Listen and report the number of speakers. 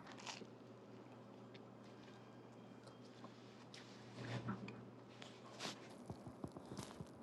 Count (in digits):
0